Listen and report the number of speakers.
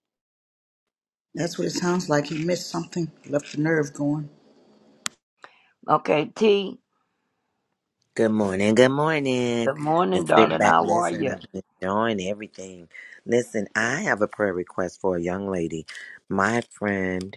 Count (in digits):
3